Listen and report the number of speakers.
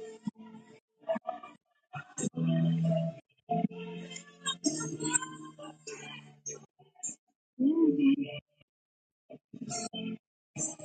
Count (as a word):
zero